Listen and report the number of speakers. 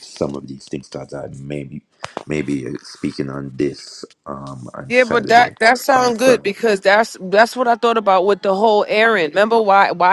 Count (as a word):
two